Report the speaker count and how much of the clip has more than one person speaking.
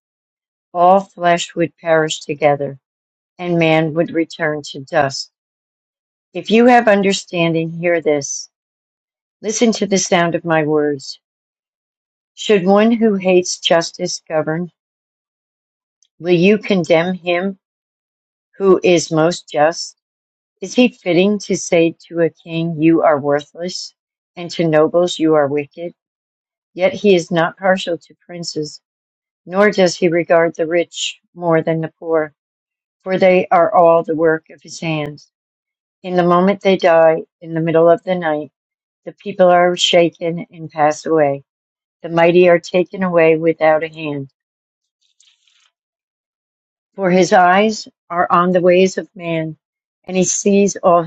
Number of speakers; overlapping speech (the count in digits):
1, no overlap